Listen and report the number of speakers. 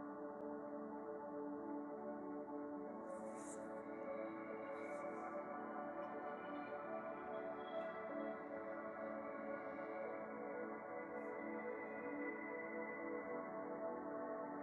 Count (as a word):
zero